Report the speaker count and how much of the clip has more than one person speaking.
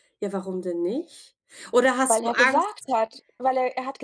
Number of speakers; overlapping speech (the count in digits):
2, about 14%